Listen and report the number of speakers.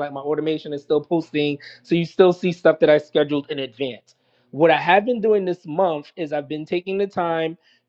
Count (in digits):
1